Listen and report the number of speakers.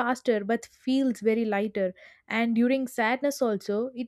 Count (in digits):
1